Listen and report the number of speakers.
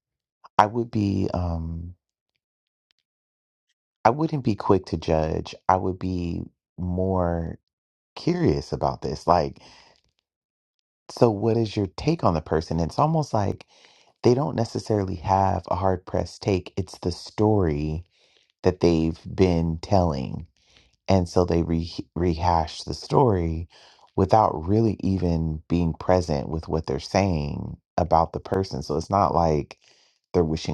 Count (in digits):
1